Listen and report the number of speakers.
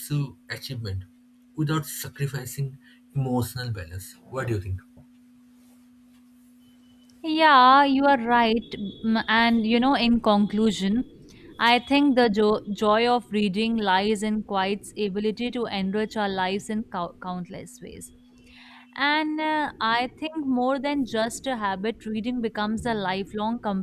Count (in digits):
2